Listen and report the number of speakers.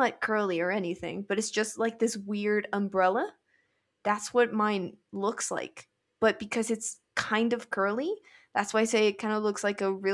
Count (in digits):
1